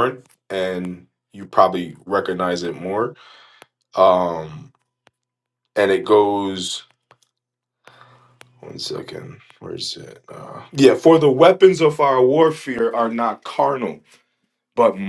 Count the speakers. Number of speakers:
one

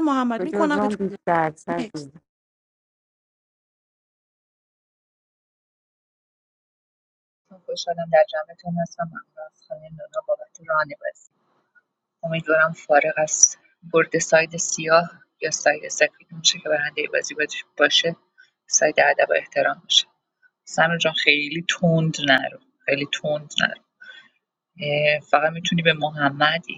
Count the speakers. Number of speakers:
three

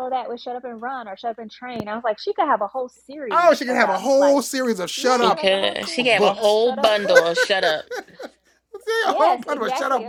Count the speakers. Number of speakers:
three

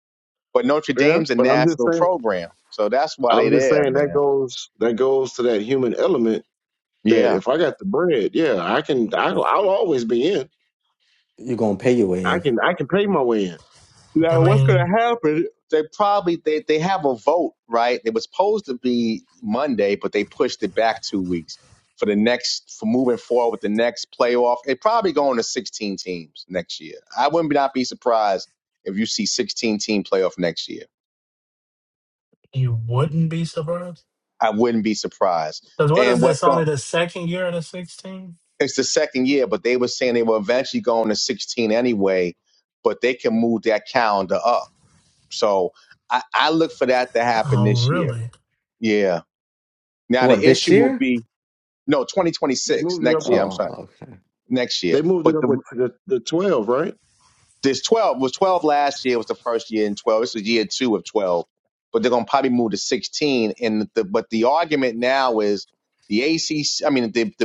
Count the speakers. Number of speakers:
four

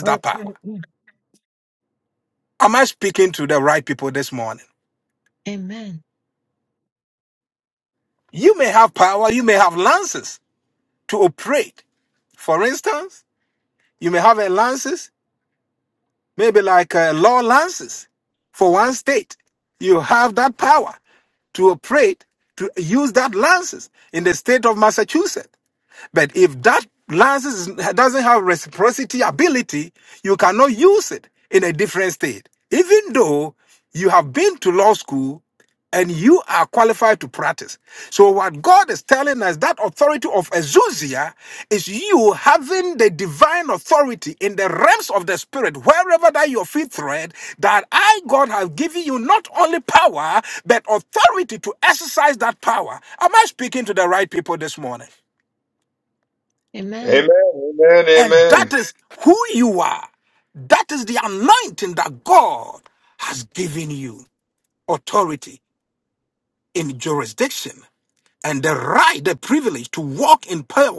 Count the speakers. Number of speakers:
three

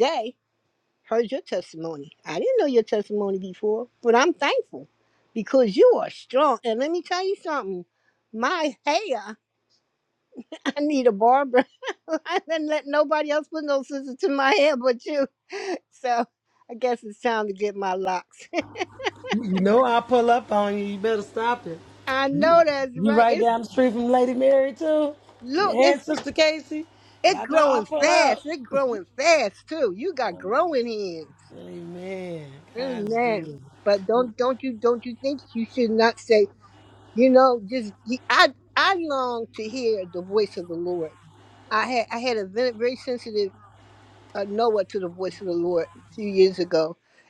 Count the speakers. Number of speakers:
two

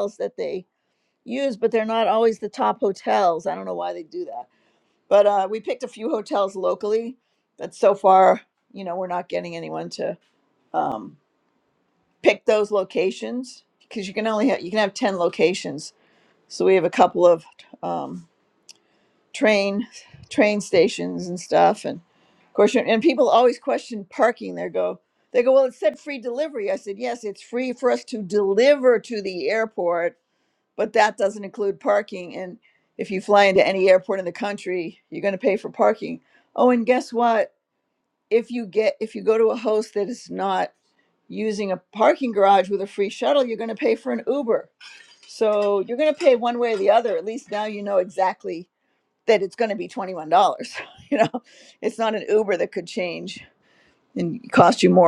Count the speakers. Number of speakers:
one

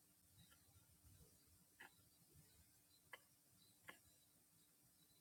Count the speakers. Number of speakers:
zero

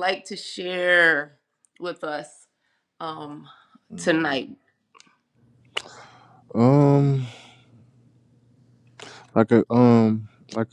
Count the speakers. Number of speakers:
two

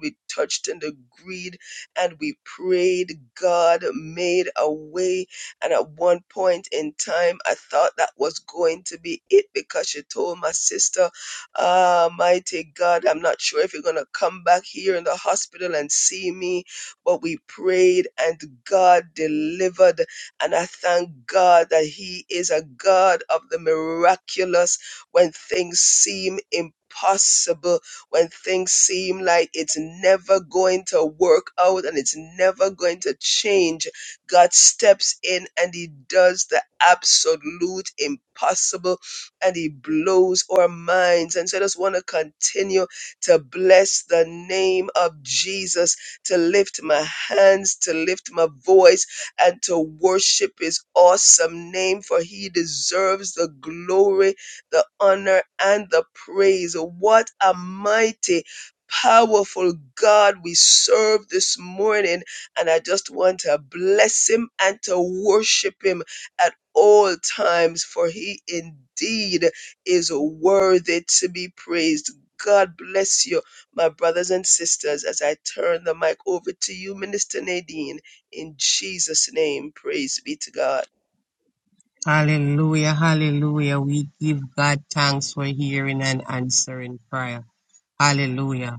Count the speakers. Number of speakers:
two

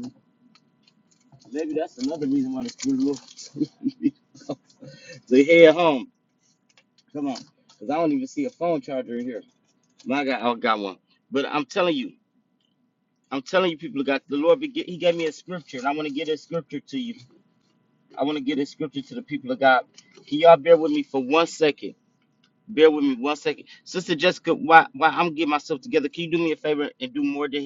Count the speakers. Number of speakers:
one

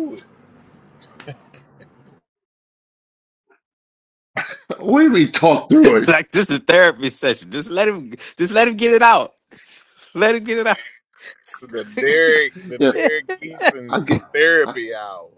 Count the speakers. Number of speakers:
three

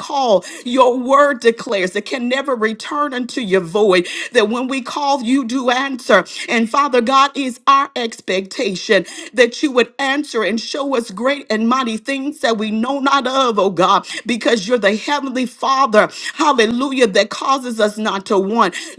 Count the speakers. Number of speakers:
one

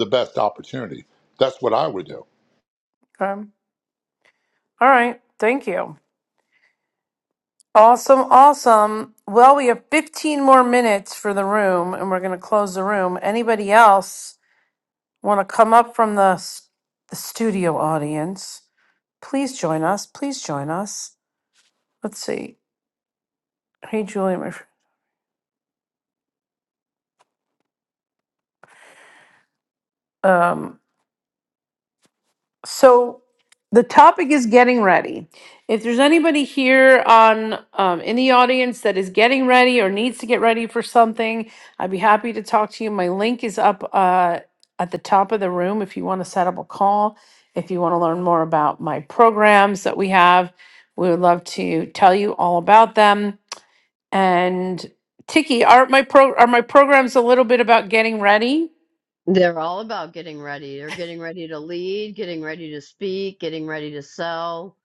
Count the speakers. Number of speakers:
three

